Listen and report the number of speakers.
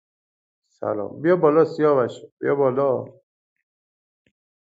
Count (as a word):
one